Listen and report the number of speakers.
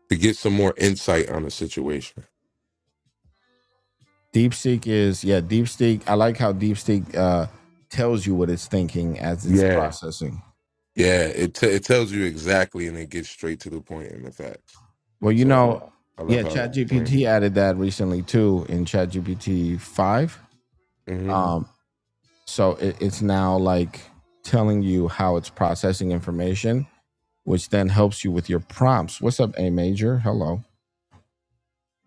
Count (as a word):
two